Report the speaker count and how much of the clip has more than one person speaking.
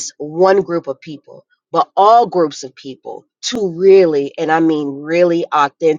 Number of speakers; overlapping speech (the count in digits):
1, no overlap